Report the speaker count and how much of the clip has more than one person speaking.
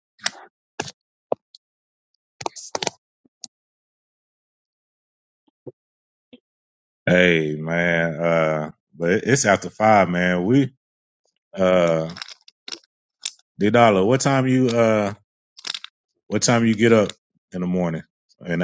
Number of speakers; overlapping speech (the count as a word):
one, no overlap